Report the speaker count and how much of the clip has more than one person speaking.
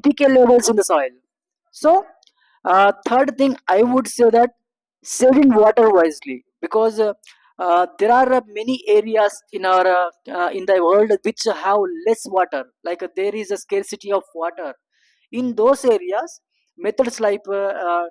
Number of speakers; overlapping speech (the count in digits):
1, no overlap